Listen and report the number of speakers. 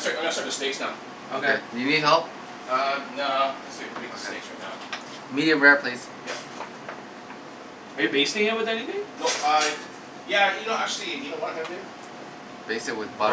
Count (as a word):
three